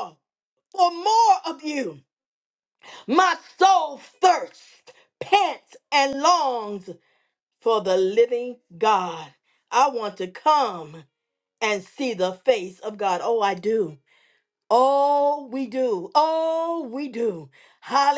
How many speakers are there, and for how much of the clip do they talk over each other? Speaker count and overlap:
1, no overlap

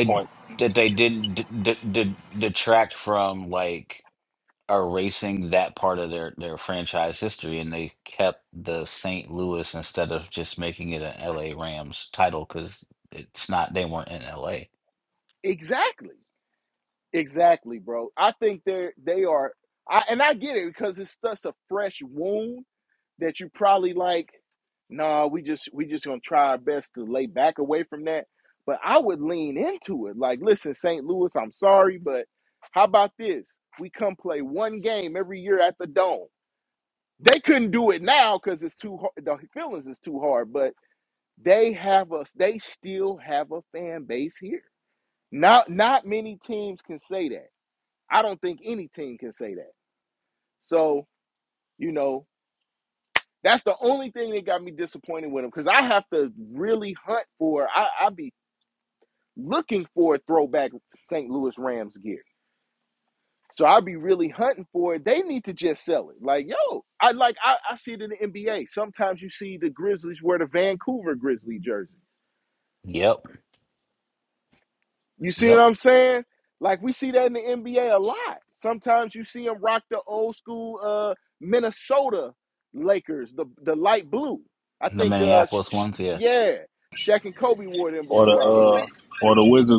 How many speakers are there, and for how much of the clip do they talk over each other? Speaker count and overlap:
3, about 3%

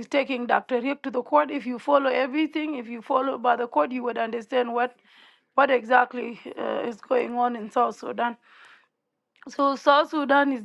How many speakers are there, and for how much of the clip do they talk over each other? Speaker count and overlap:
1, no overlap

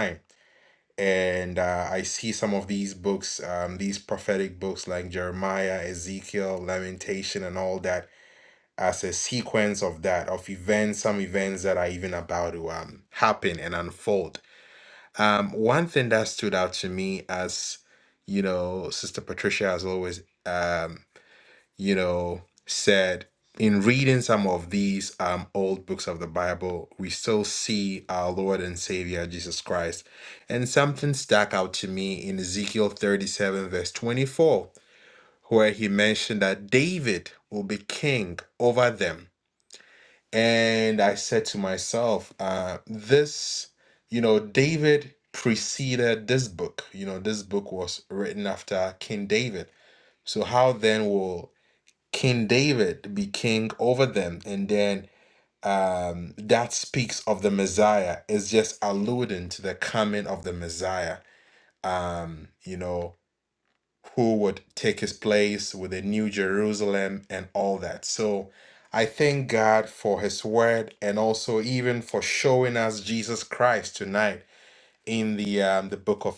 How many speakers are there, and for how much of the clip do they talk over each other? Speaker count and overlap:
1, no overlap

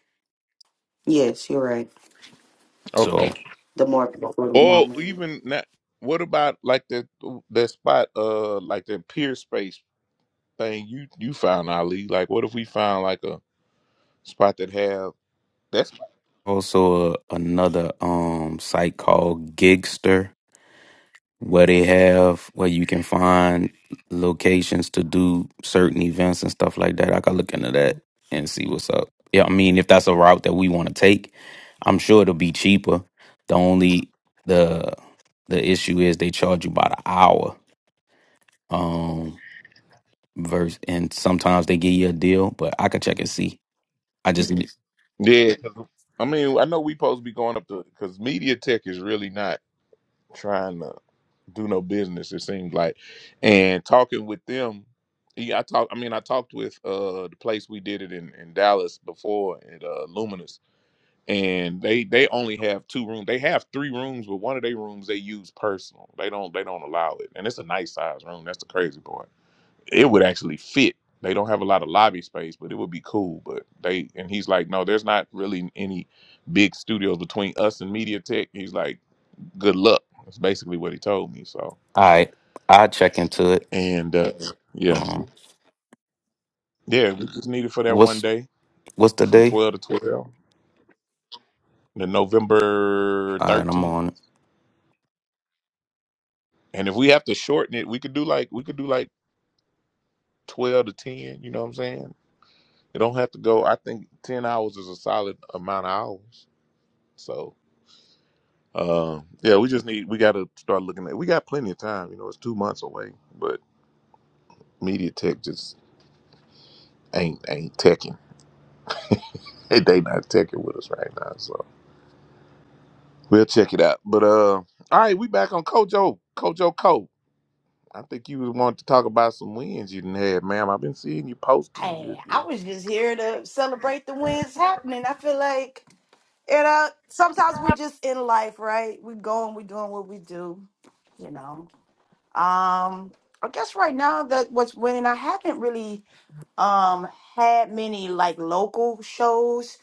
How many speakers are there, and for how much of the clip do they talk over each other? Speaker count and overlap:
4, about 2%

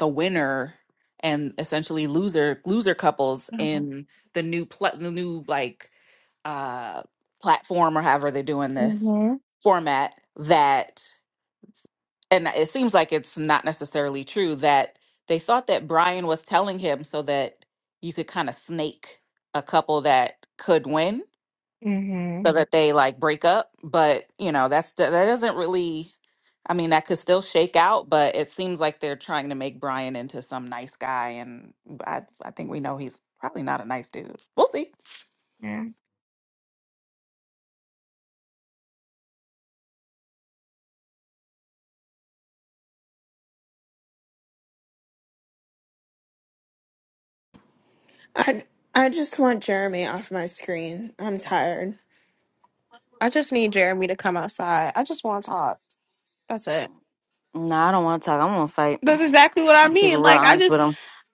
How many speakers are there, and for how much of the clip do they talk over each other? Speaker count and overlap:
5, about 2%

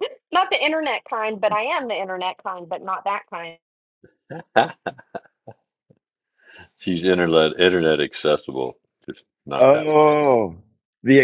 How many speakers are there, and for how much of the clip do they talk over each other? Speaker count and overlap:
3, about 3%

